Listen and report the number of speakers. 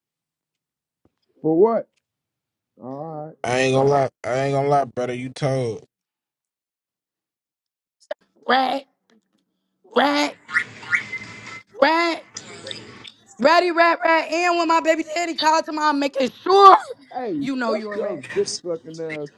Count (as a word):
three